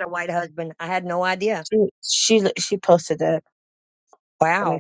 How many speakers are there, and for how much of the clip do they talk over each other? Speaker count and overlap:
2, about 5%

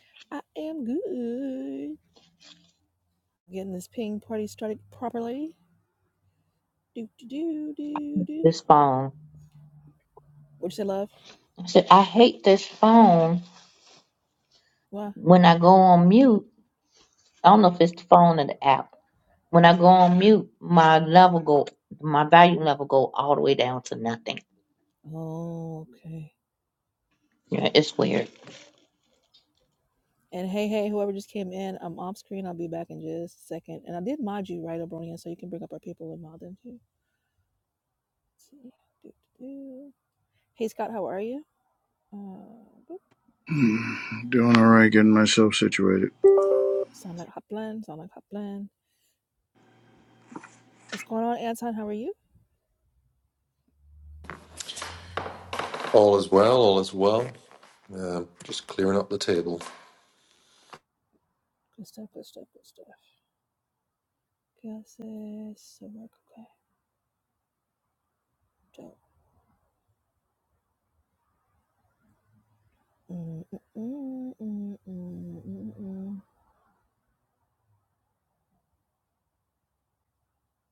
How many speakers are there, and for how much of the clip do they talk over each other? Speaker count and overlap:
4, under 1%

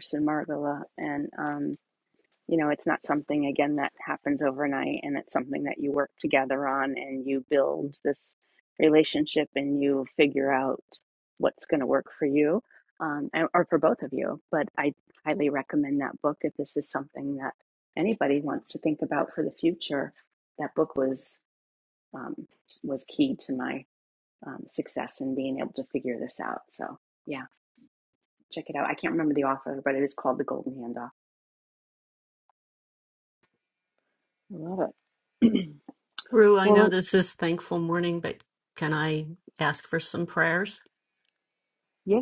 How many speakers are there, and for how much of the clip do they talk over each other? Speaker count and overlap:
3, about 1%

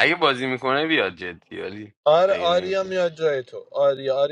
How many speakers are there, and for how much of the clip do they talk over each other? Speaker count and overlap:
2, about 14%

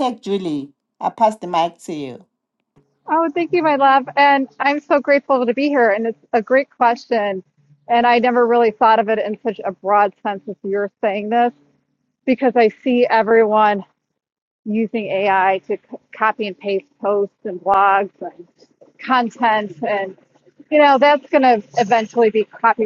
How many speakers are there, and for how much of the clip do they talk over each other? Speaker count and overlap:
2, no overlap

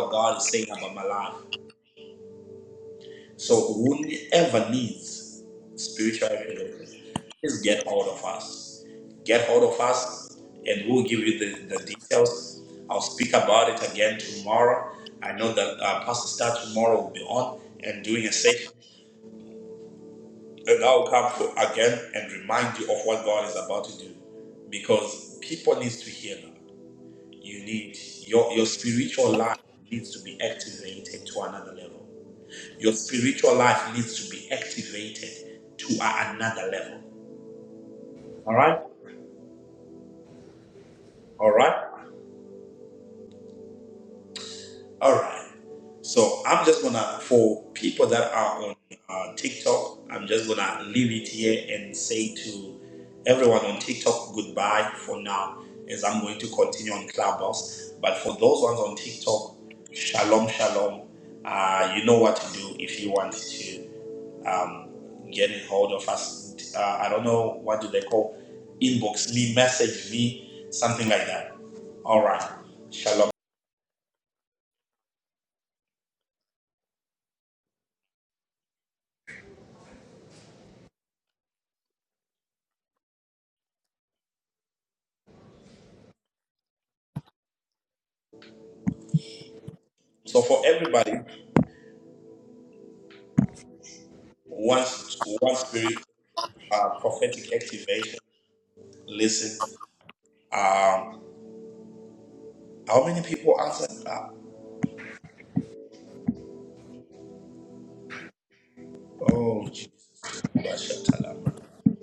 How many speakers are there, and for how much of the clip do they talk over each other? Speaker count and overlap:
1, no overlap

